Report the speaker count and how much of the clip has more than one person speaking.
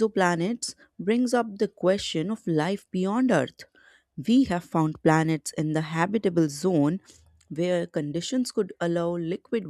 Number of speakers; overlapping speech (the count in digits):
1, no overlap